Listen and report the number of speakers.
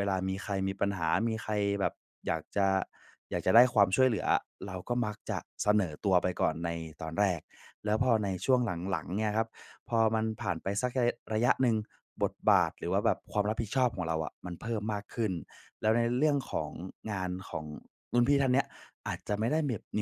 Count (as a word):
one